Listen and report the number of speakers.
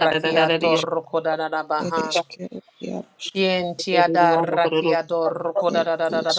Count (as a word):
three